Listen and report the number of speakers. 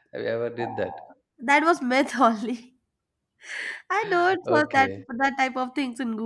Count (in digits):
2